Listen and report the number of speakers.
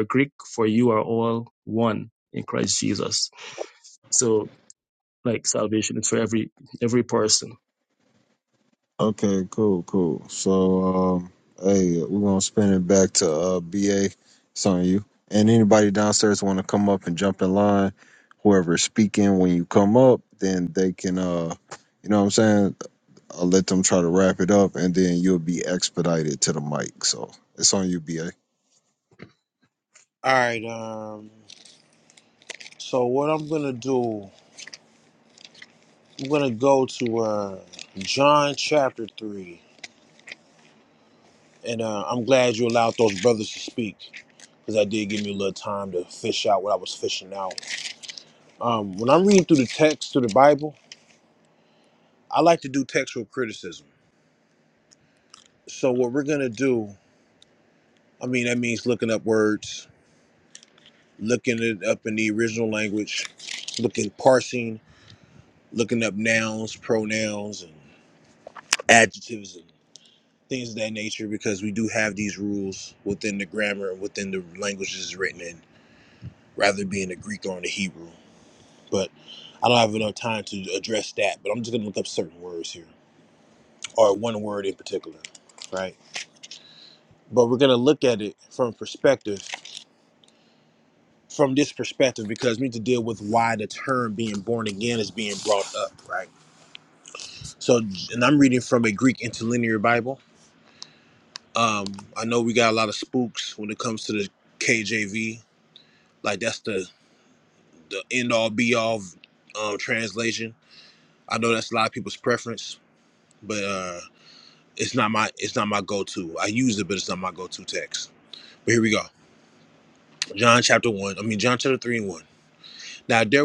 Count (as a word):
three